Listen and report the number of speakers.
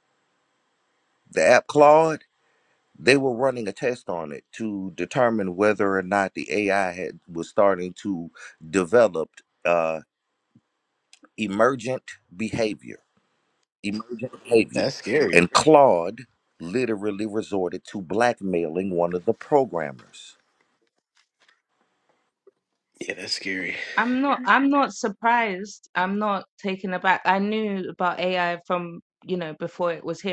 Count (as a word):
three